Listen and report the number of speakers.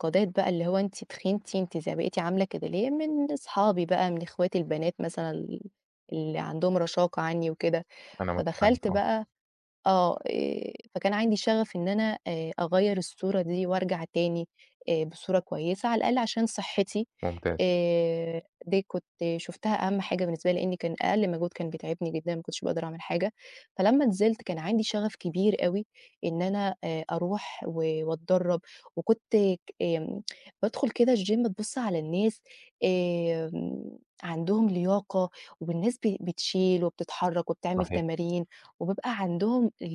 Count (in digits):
2